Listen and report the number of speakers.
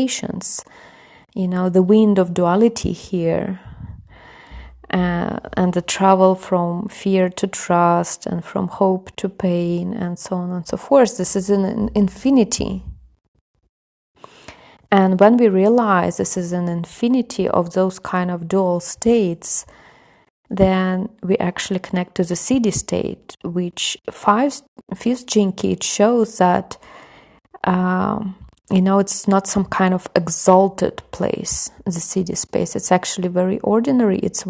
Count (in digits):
1